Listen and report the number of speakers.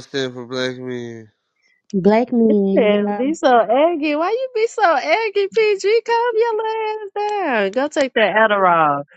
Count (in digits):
3